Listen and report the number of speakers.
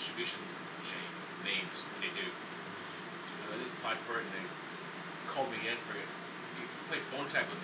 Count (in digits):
1